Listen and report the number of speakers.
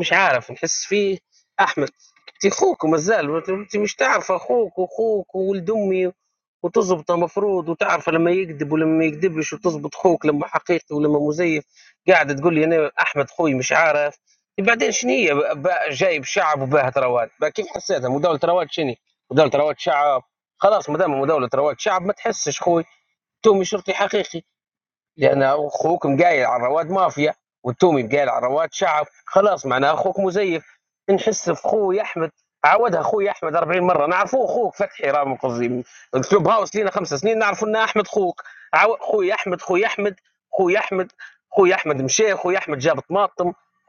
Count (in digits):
1